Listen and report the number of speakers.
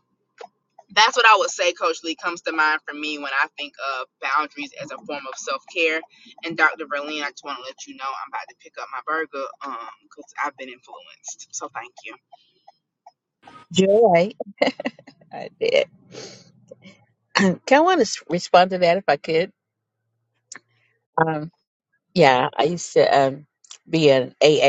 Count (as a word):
two